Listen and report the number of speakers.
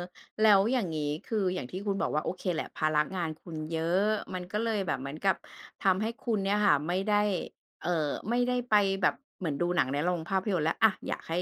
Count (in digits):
1